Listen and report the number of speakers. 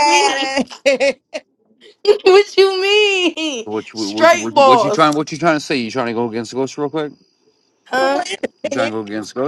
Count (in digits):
3